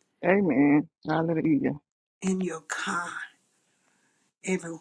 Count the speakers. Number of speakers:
two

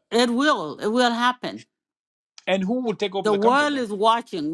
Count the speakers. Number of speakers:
two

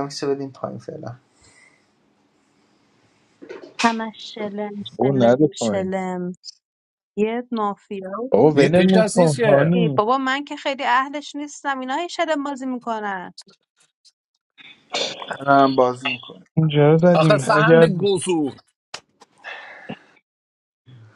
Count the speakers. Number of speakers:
four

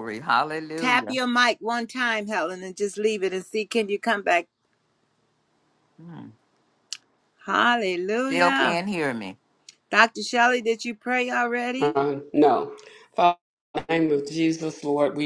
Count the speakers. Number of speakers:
three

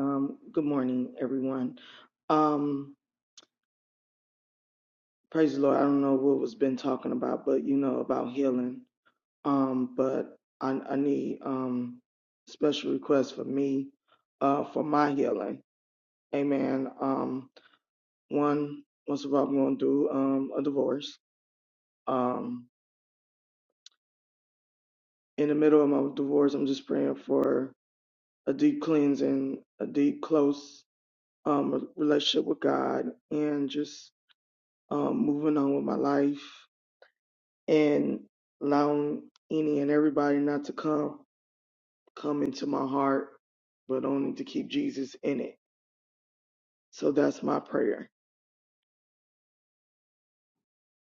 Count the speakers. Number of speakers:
one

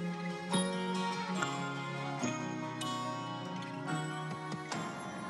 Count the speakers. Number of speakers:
zero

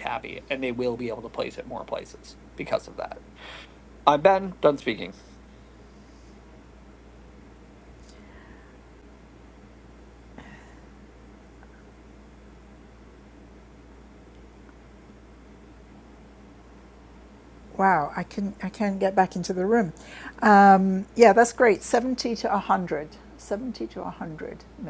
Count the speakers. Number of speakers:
two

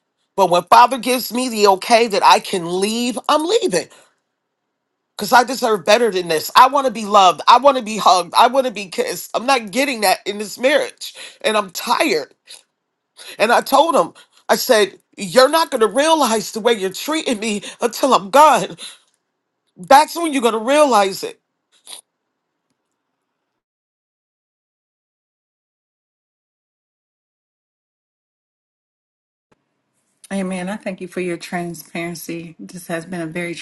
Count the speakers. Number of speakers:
two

